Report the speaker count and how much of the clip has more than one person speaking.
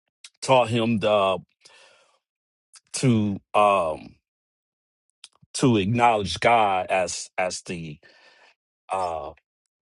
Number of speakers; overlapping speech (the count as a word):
one, no overlap